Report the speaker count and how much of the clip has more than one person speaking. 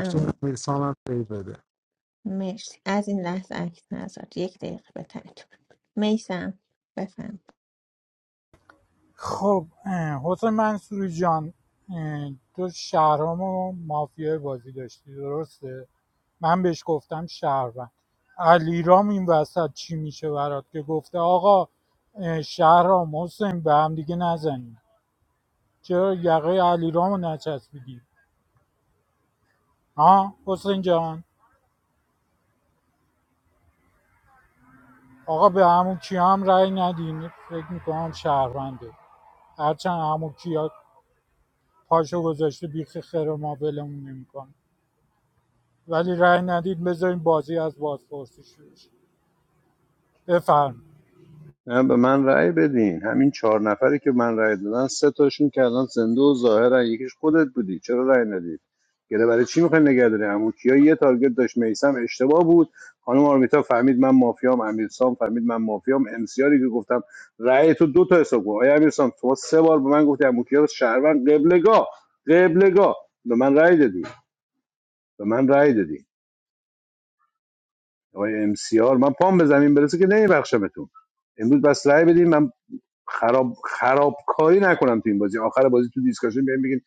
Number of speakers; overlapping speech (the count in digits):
4, under 1%